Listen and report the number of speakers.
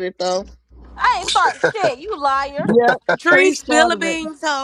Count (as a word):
three